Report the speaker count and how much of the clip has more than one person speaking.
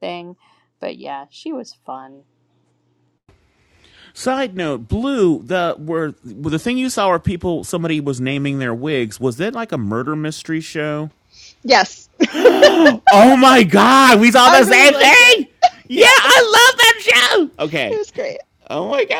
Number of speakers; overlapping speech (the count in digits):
3, about 7%